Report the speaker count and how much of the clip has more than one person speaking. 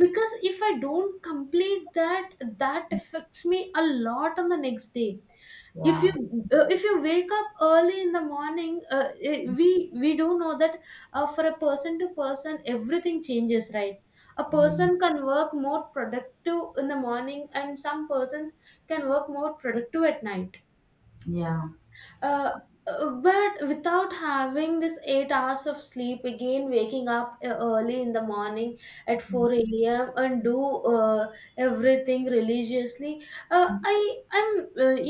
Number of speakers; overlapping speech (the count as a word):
two, about 2%